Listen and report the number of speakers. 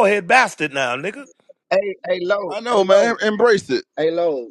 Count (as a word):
three